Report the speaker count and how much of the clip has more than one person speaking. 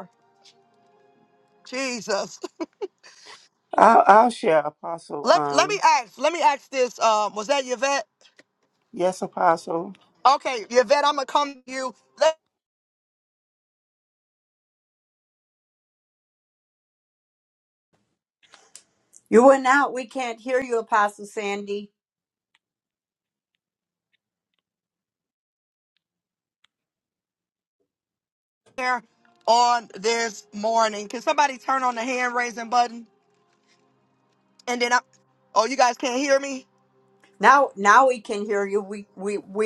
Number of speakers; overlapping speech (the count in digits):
3, about 1%